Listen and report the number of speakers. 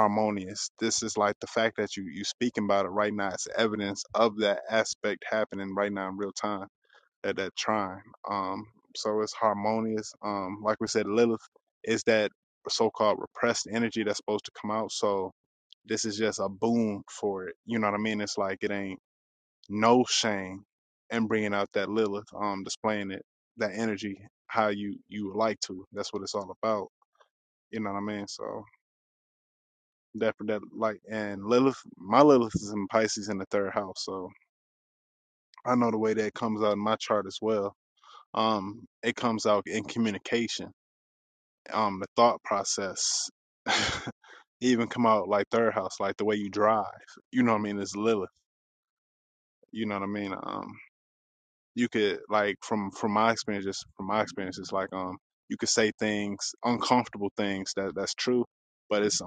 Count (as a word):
one